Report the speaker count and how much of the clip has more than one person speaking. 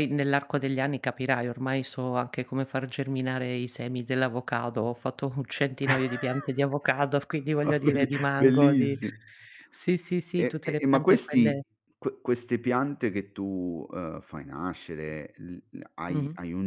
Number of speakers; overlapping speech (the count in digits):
2, about 17%